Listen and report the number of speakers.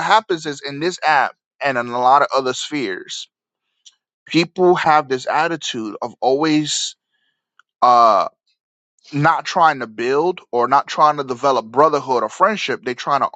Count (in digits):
1